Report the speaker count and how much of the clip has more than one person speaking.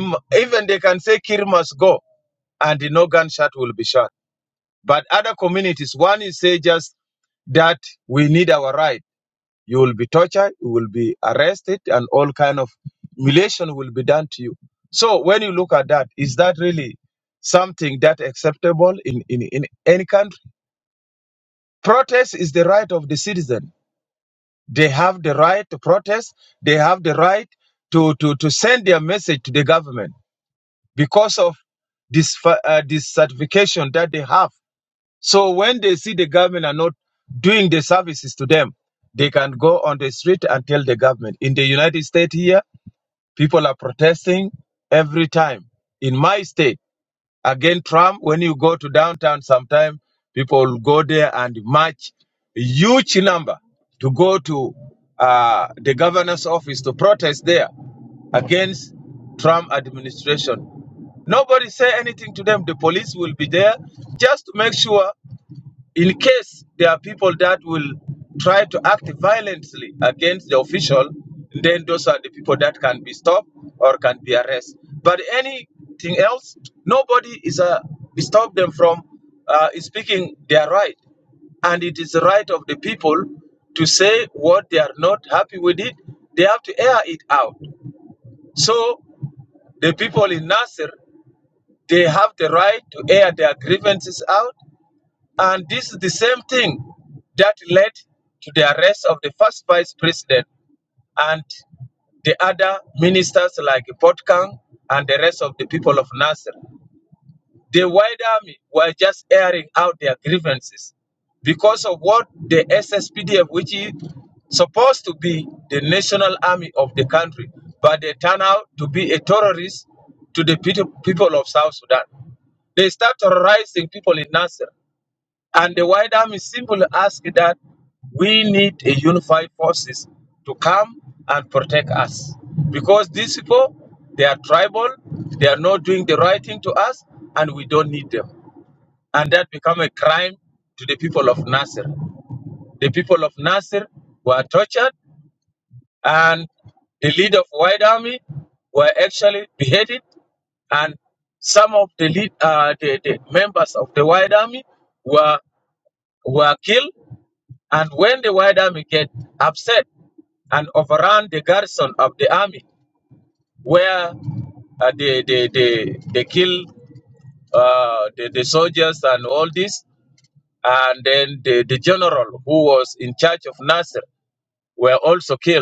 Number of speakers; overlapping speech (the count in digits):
1, no overlap